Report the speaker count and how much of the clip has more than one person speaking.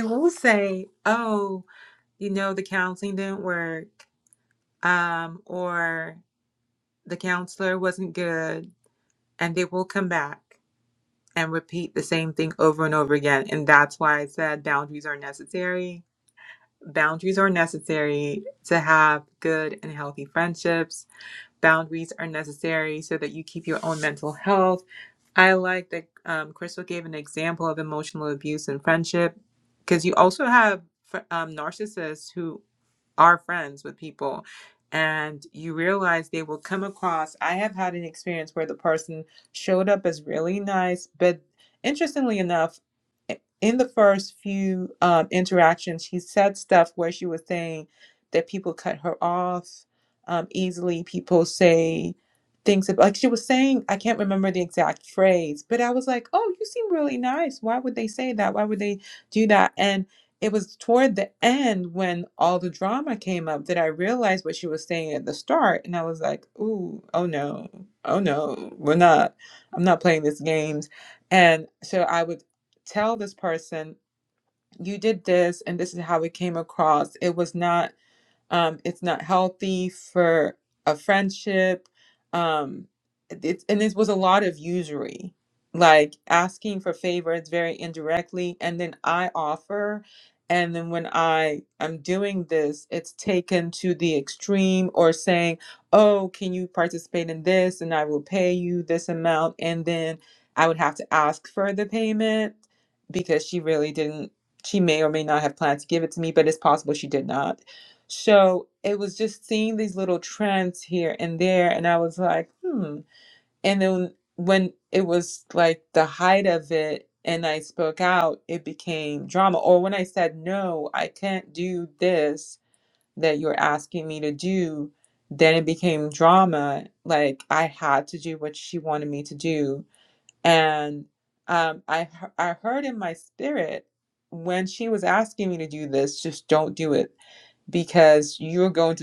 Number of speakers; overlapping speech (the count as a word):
one, no overlap